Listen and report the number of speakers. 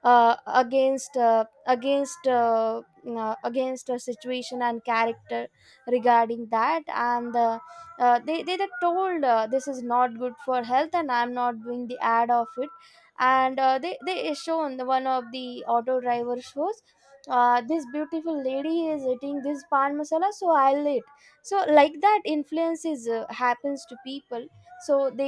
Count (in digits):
1